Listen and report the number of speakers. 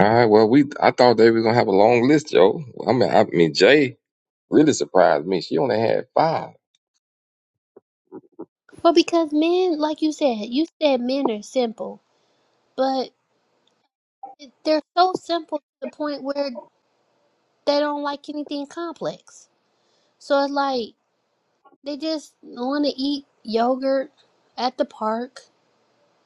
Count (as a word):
two